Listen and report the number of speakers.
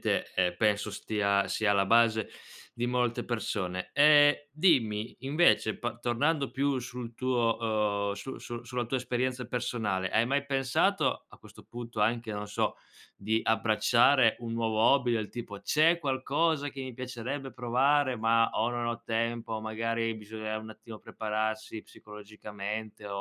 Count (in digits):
1